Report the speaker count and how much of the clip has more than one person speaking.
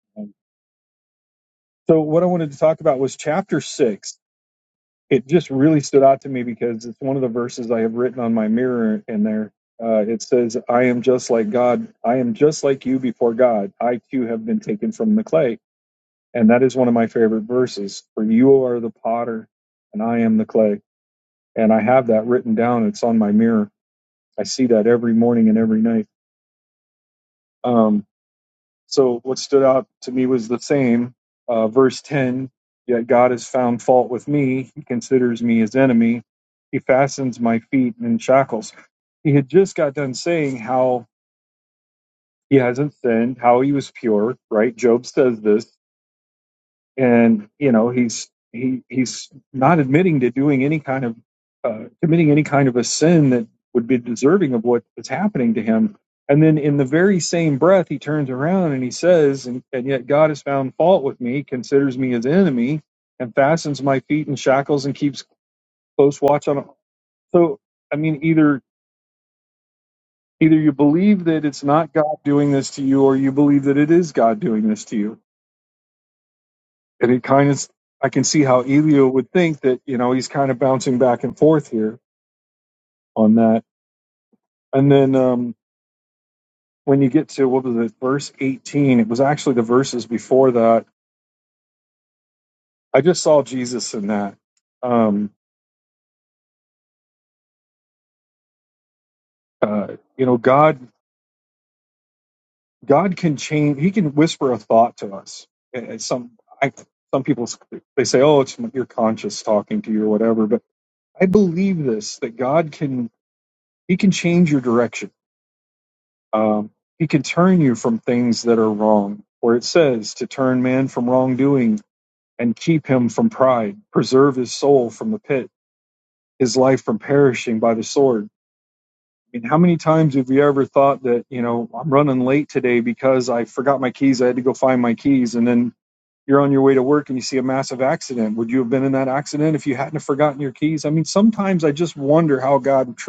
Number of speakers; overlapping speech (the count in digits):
1, no overlap